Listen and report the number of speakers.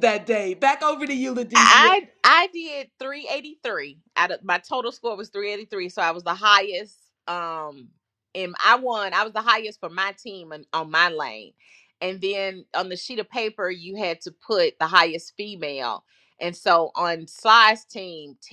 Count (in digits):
2